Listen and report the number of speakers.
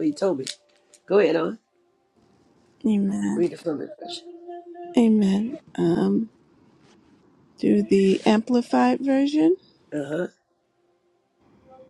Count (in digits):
2